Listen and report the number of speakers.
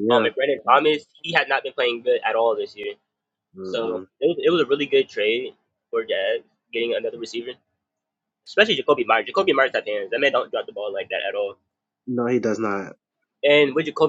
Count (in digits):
2